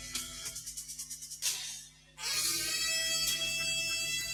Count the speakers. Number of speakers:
0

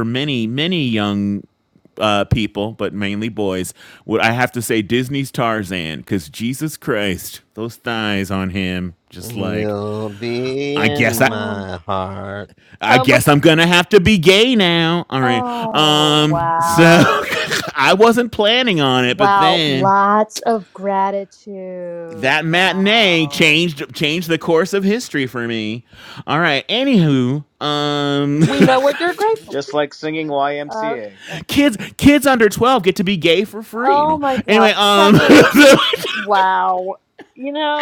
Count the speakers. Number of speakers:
4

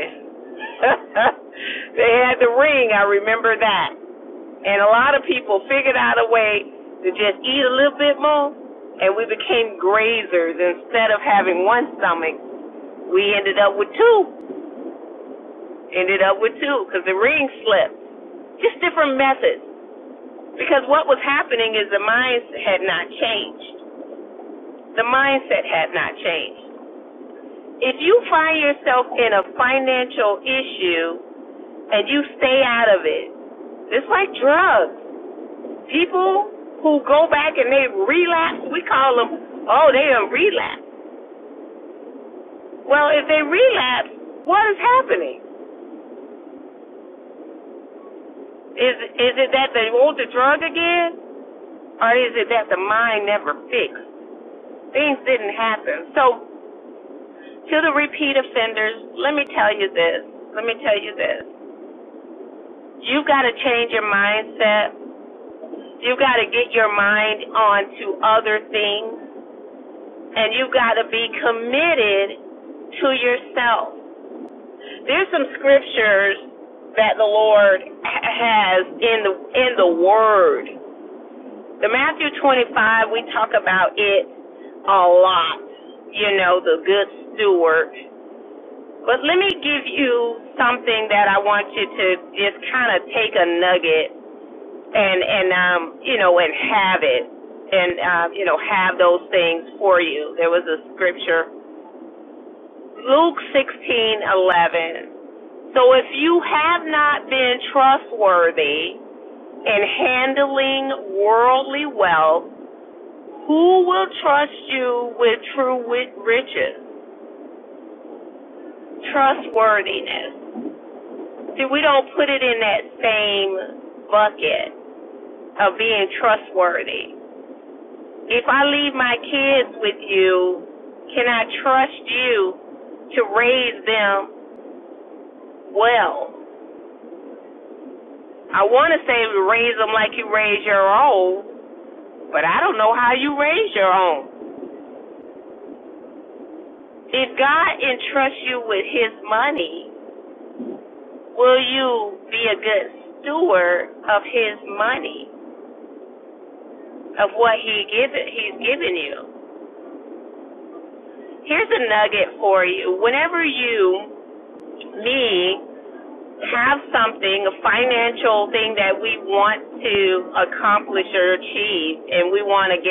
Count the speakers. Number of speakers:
1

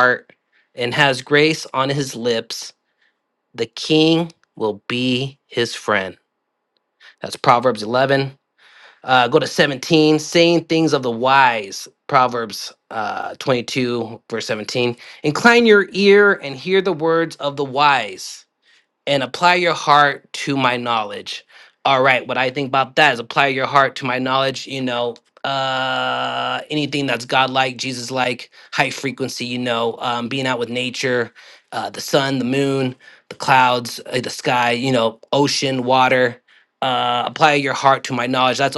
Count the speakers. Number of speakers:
1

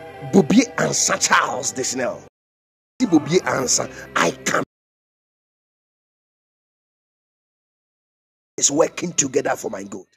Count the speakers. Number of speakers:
1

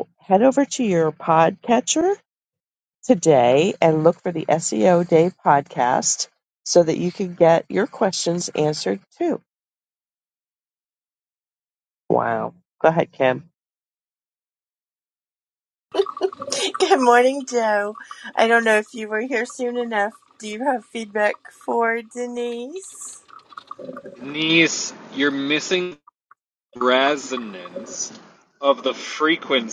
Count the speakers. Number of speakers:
3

